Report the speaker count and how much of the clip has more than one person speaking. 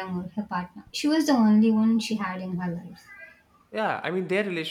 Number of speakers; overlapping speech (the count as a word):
two, no overlap